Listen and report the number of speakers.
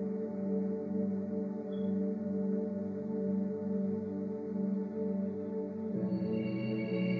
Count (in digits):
0